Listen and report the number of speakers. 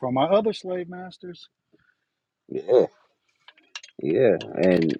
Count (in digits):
2